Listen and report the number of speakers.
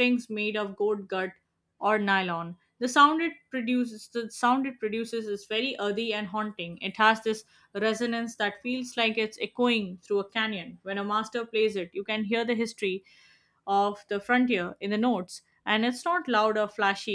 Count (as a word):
one